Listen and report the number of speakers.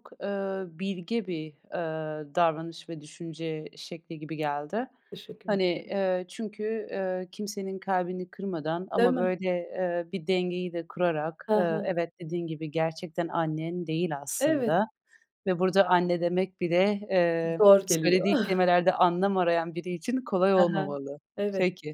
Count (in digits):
2